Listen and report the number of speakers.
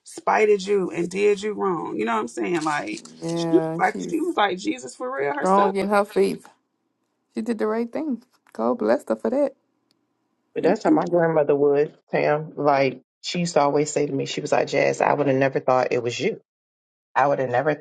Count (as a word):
three